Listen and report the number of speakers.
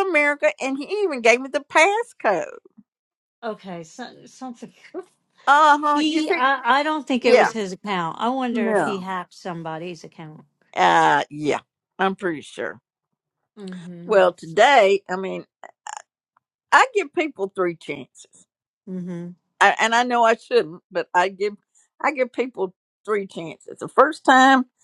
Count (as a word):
two